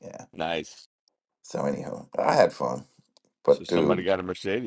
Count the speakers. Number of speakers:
two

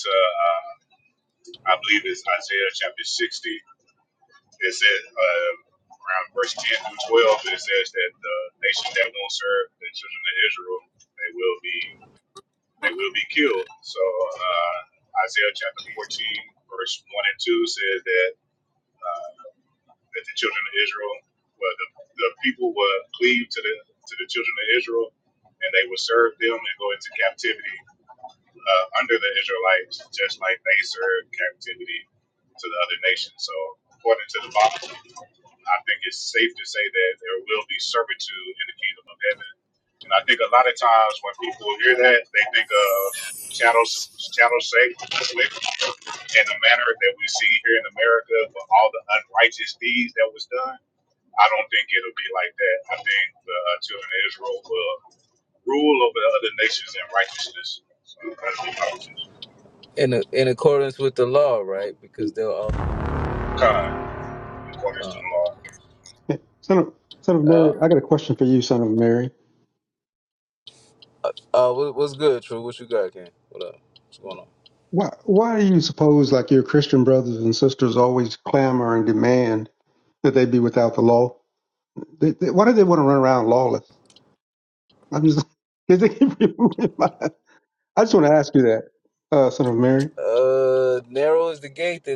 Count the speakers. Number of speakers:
three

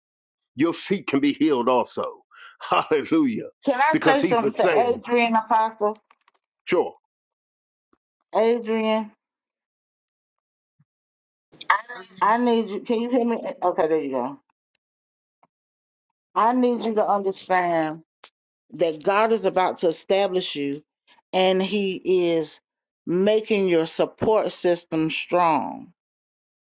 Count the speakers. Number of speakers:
two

